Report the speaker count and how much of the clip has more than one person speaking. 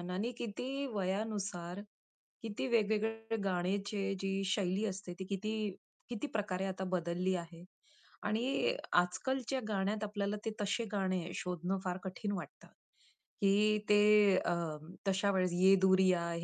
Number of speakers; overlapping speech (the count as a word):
one, no overlap